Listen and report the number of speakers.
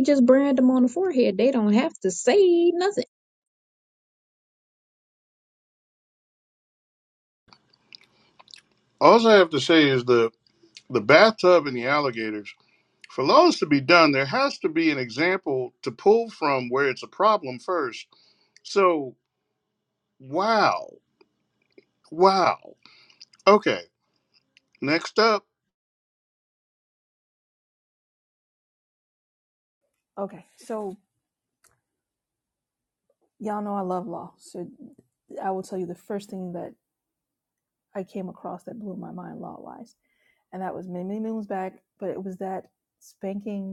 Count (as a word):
three